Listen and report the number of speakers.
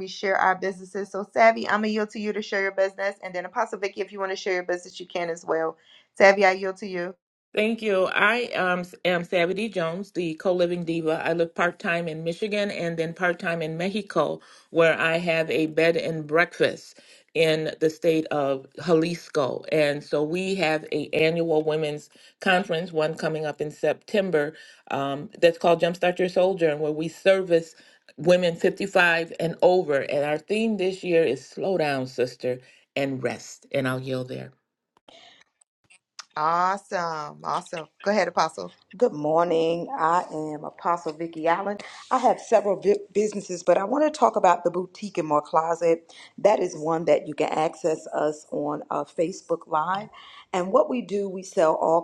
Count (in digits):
3